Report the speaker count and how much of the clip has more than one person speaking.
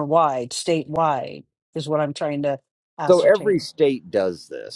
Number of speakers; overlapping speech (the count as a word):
two, about 10%